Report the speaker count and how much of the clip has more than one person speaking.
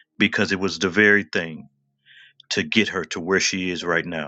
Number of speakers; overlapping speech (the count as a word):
one, no overlap